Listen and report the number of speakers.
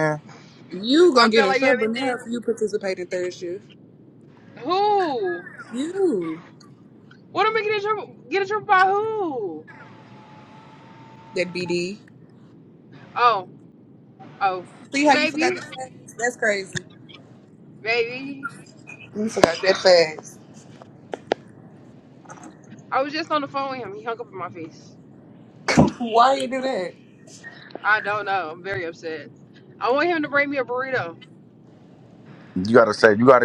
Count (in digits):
3